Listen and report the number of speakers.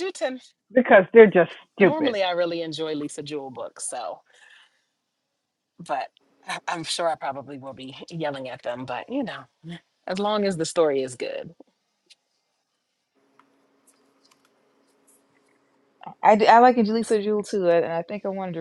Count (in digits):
3